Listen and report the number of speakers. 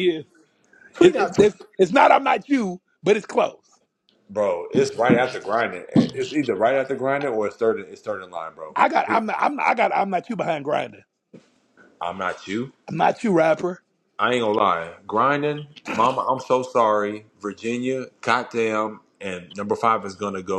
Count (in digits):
2